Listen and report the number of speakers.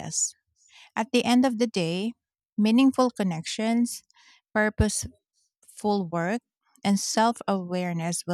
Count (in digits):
1